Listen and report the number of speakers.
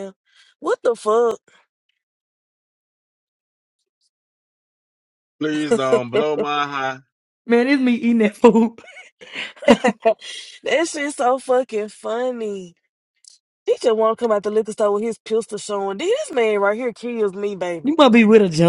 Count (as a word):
three